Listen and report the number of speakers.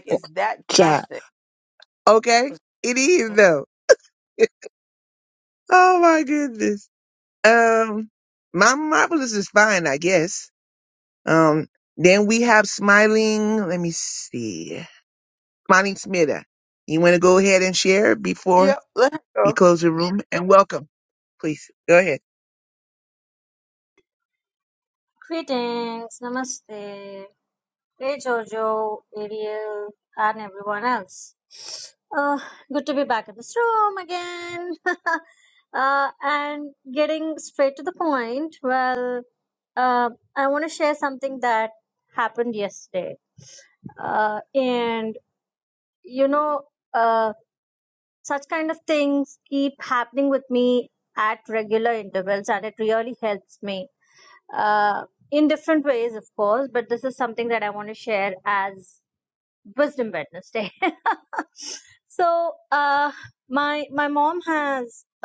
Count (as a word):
three